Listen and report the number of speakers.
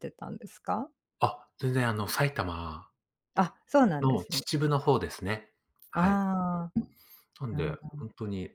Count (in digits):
2